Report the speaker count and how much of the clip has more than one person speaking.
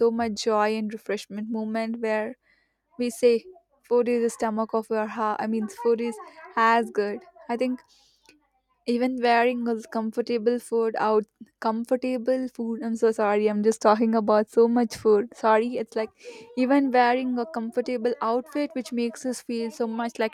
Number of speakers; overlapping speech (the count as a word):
one, no overlap